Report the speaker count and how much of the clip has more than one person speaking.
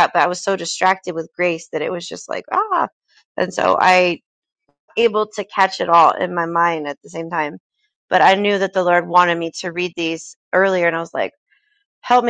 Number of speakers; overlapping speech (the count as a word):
one, no overlap